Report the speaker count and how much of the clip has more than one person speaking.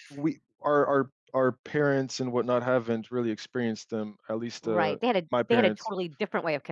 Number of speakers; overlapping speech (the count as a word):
two, about 12%